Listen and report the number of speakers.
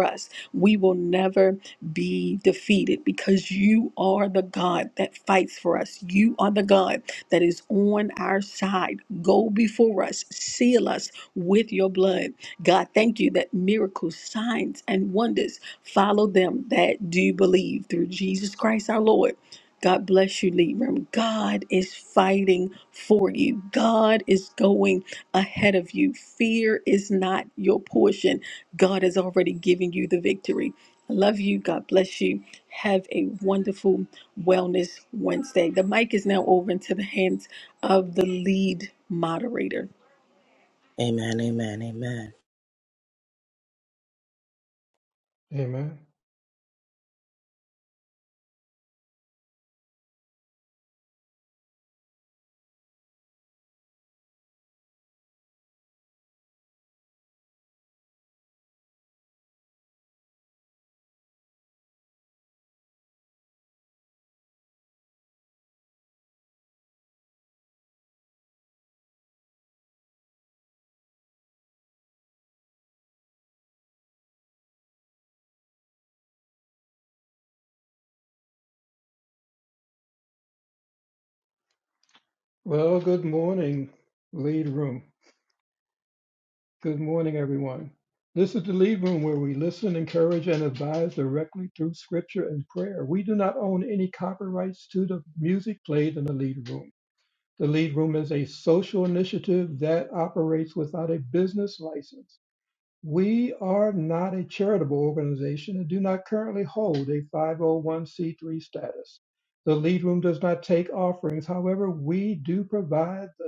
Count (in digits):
3